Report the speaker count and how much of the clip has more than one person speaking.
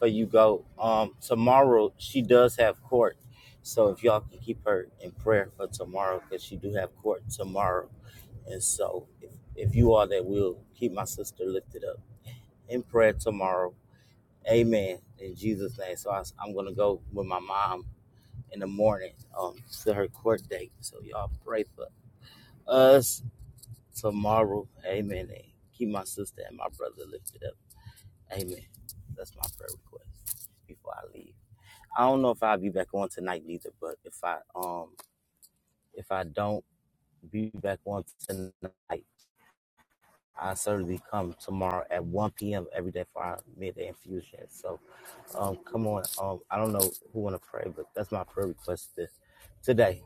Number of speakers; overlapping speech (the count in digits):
1, no overlap